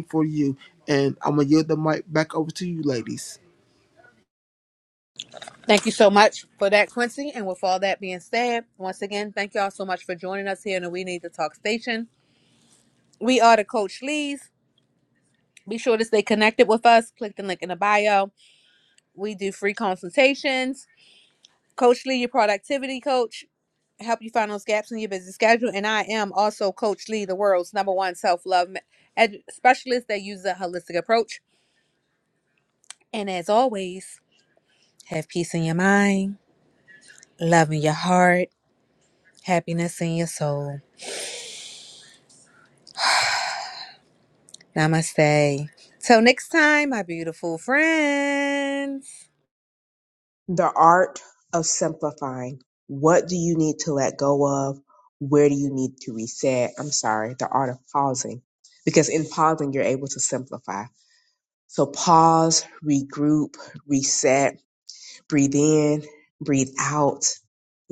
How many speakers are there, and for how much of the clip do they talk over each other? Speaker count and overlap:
3, no overlap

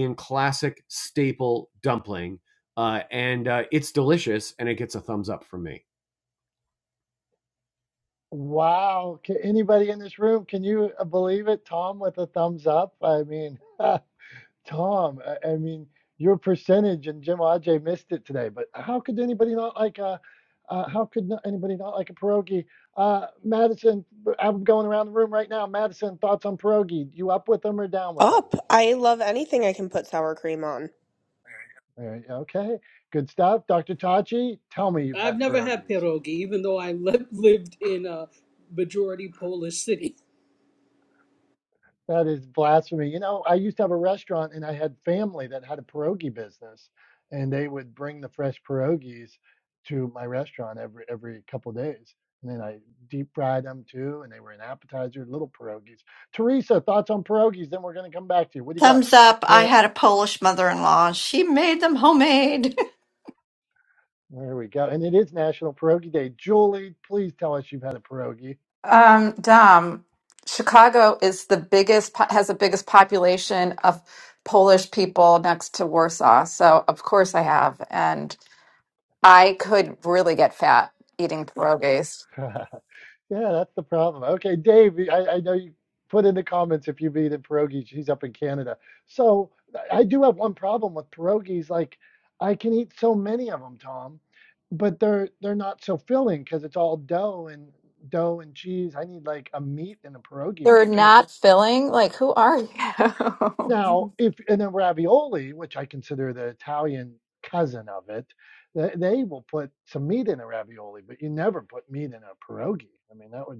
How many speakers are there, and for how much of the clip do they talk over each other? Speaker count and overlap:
6, about 1%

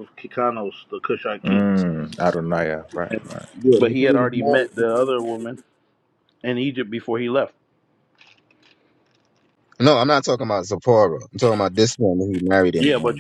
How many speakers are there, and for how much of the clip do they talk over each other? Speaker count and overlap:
3, about 10%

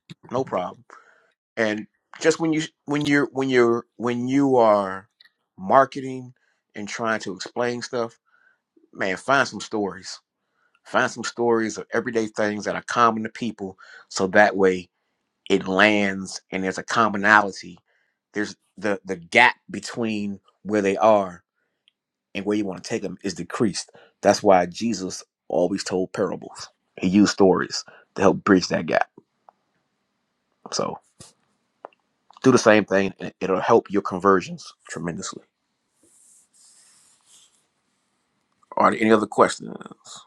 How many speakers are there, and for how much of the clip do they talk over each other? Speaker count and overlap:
1, no overlap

